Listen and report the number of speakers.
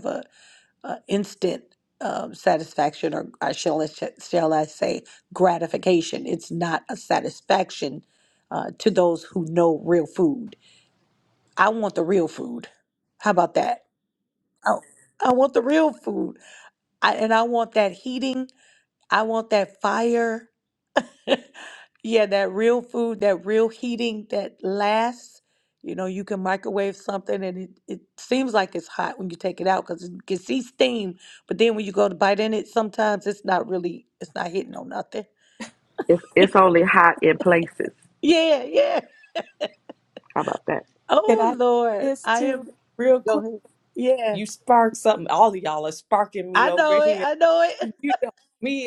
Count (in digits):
3